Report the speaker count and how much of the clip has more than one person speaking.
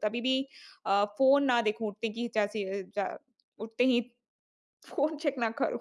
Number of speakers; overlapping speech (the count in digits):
1, no overlap